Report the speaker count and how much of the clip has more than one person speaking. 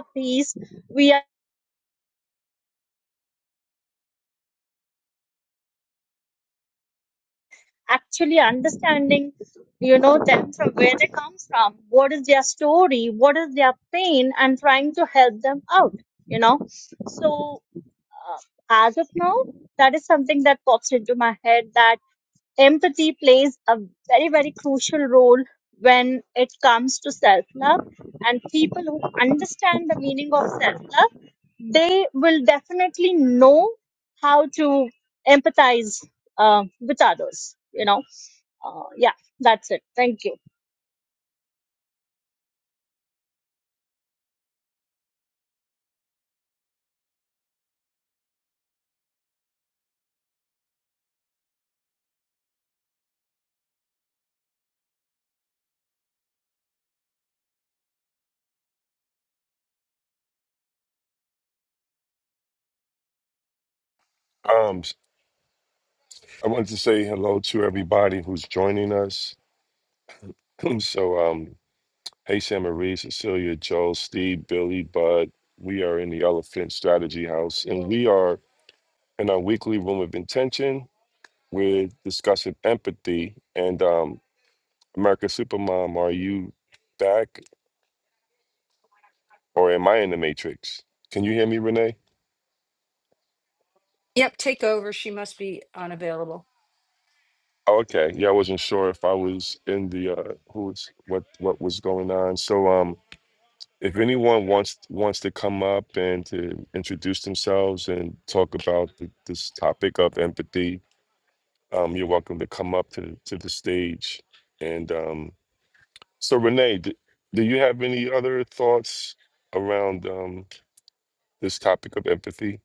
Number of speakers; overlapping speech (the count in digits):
3, no overlap